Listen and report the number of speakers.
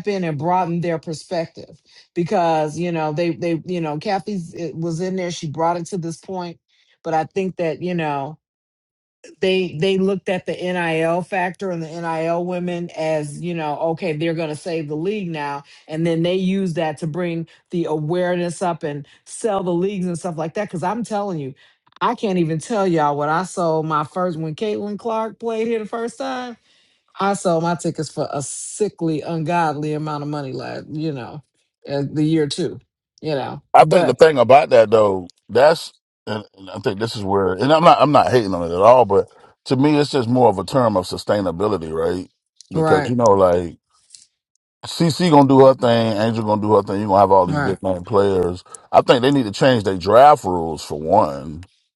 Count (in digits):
2